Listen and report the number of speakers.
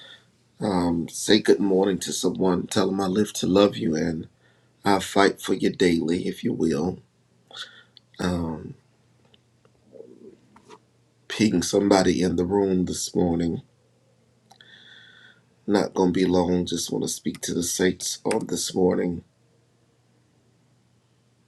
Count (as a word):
one